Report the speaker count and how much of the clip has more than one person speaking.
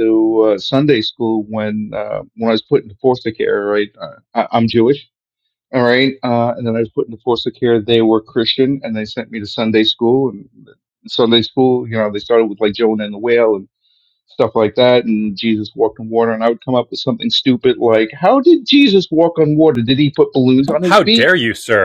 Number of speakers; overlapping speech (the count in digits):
2, about 2%